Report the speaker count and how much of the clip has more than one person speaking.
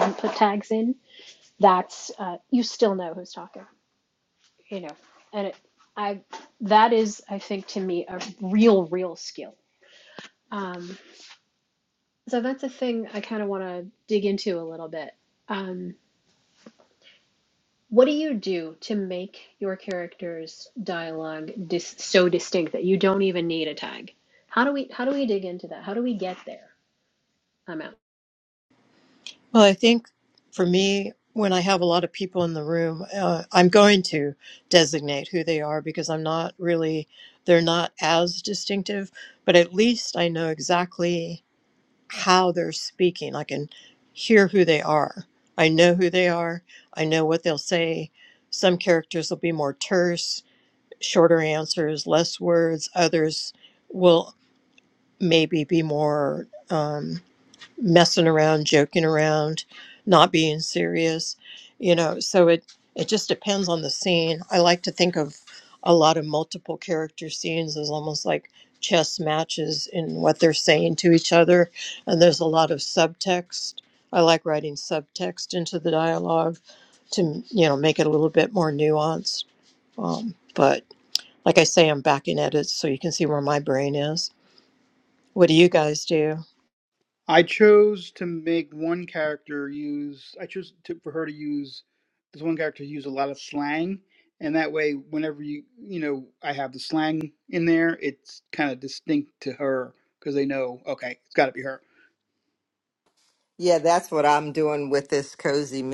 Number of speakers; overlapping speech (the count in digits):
4, no overlap